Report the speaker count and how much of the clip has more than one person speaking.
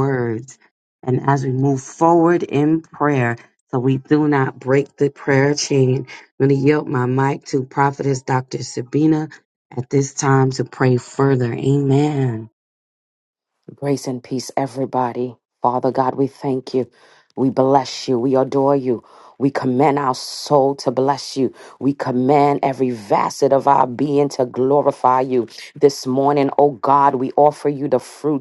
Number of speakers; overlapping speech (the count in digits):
2, no overlap